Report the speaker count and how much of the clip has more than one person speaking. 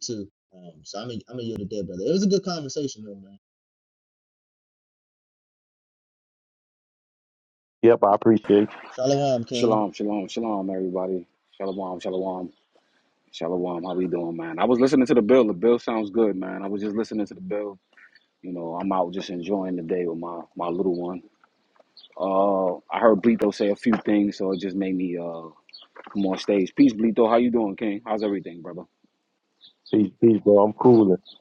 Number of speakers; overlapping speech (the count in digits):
3, about 1%